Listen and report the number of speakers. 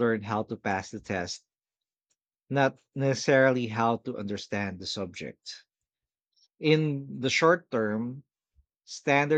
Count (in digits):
1